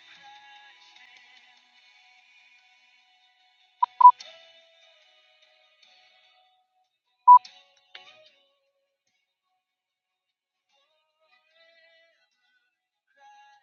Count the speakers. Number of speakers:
0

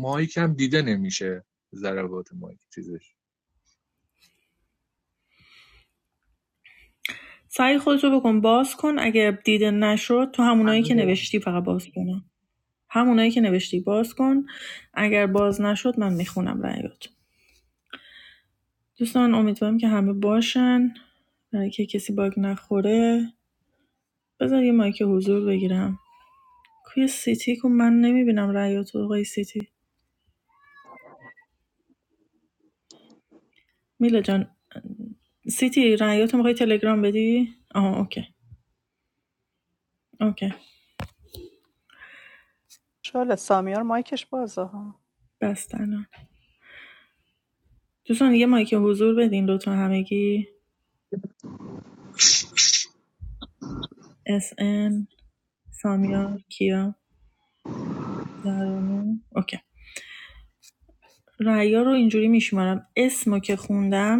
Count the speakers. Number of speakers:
3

